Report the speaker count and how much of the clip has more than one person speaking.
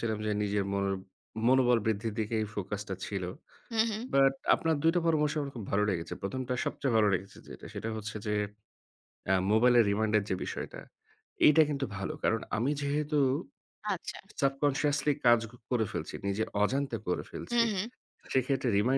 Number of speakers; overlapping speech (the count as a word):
two, about 1%